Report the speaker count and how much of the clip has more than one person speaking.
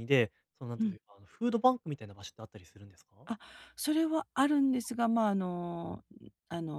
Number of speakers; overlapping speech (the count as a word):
two, about 2%